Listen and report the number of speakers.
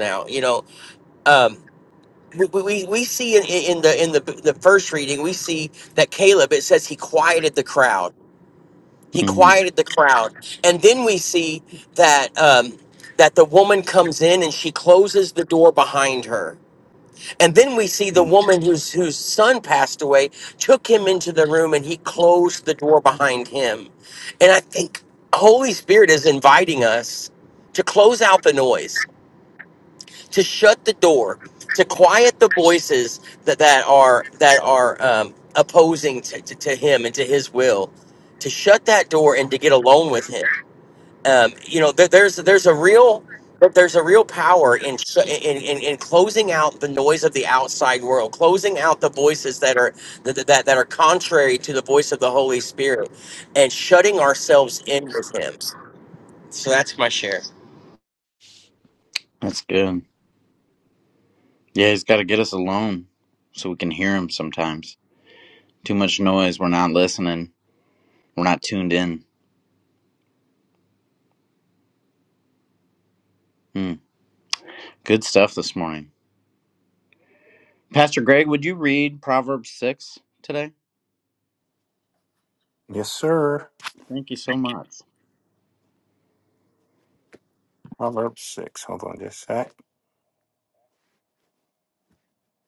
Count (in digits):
3